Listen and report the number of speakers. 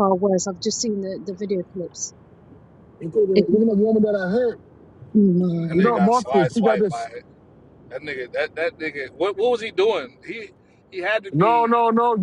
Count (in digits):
3